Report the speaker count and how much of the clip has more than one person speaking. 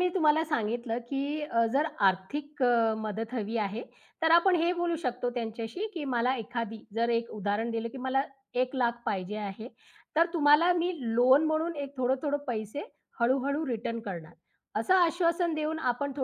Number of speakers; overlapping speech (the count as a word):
one, no overlap